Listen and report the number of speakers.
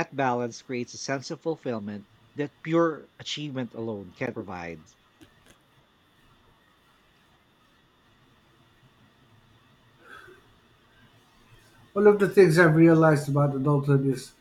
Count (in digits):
2